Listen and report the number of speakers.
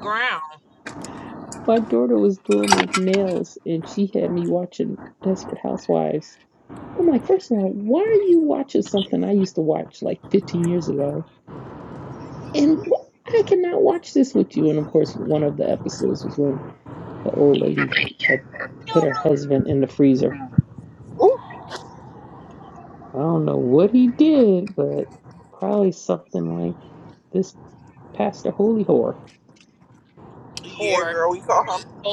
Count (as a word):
three